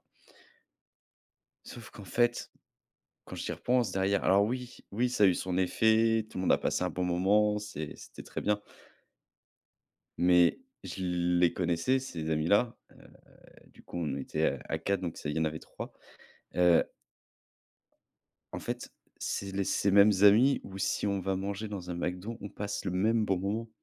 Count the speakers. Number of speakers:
one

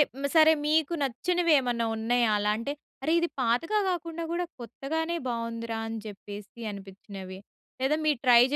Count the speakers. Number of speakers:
one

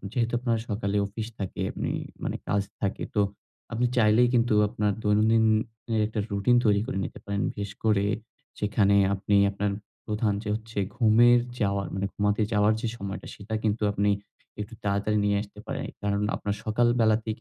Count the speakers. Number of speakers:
one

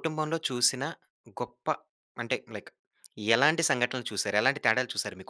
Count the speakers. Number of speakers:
one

